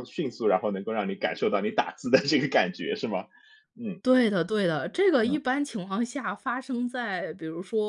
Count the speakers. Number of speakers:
2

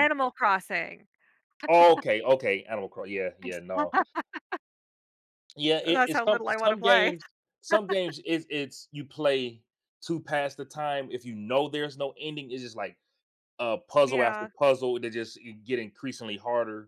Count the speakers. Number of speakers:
2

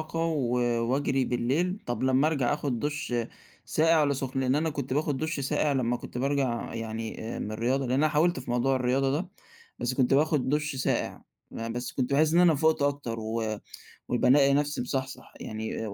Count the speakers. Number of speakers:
1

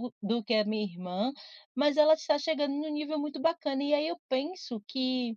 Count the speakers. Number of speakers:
1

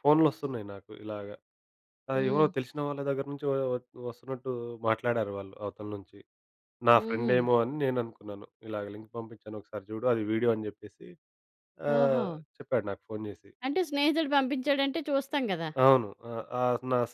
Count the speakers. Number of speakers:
2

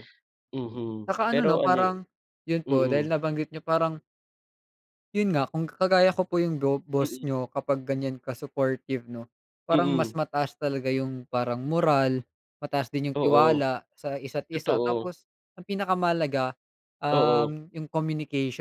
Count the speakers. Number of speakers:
2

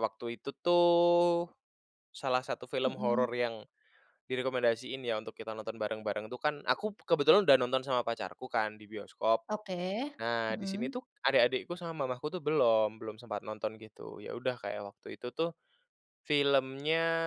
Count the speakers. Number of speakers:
2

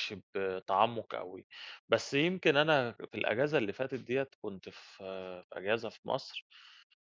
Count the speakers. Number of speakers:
1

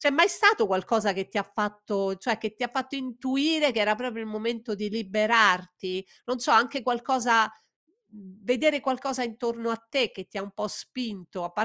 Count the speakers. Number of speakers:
1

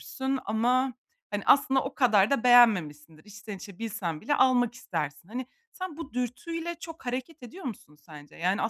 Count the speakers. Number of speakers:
1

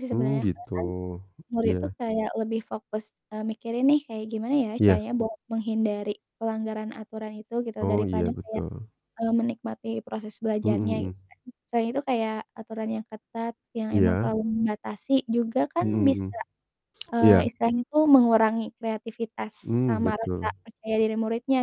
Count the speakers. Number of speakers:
2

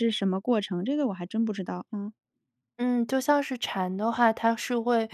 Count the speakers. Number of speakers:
2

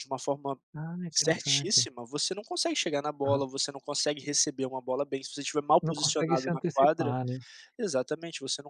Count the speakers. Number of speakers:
2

